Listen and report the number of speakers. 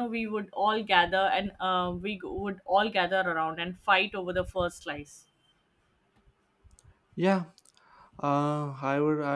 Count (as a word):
two